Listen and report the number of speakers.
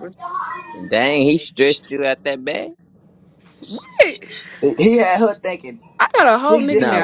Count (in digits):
3